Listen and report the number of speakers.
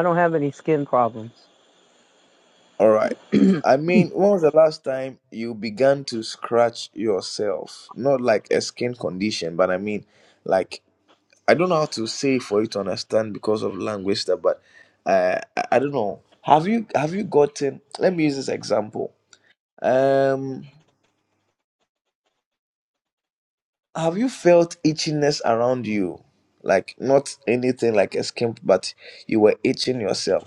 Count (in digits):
2